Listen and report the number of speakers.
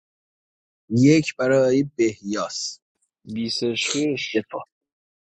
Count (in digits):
2